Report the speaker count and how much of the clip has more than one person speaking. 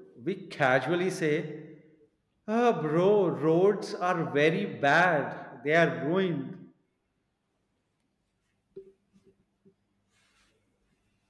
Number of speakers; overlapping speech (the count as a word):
one, no overlap